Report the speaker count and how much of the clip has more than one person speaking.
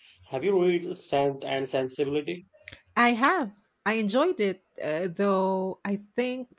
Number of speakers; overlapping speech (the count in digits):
2, no overlap